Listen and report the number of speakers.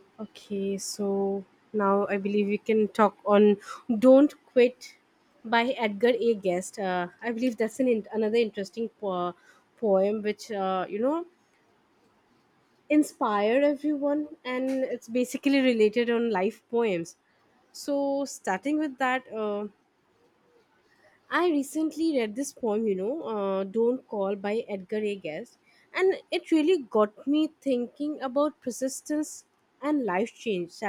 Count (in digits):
1